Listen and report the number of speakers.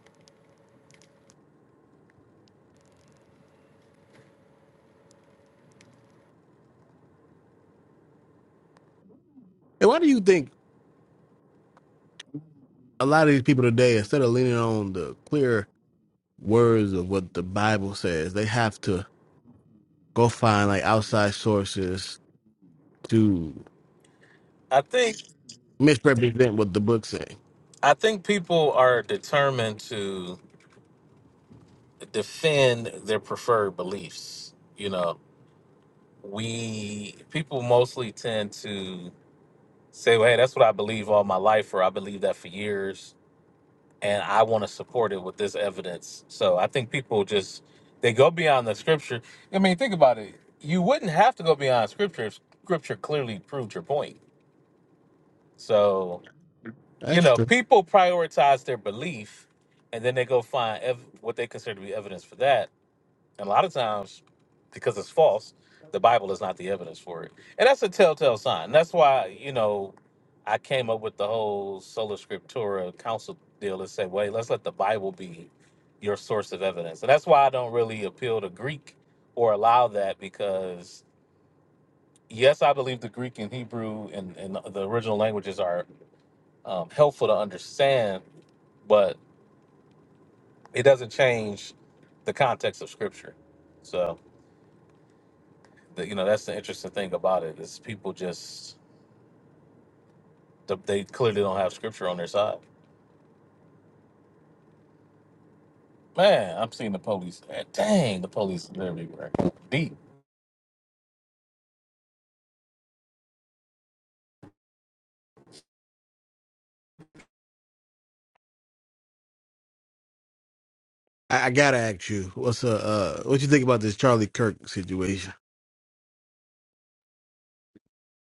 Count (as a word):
two